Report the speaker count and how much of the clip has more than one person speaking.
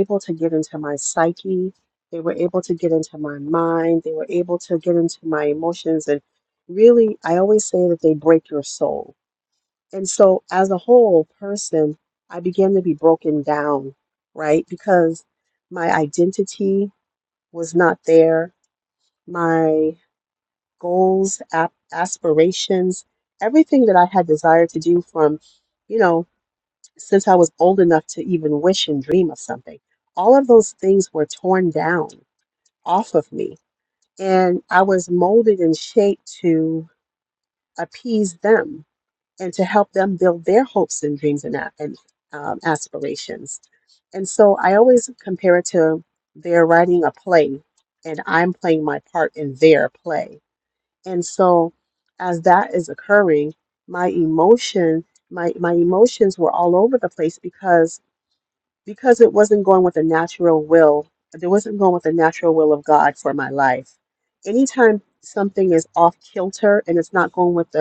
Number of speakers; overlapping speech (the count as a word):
one, no overlap